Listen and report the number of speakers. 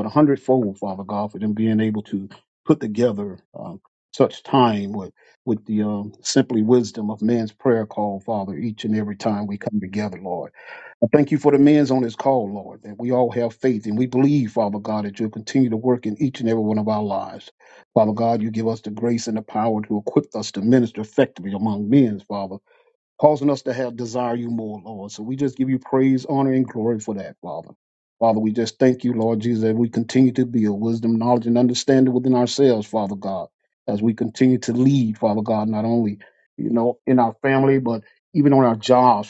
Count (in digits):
1